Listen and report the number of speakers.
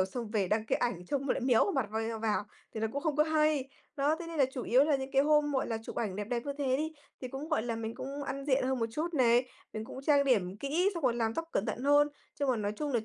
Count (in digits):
1